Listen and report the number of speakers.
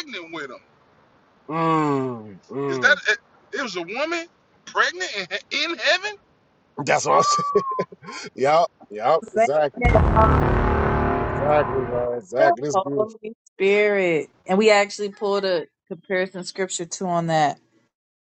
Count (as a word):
three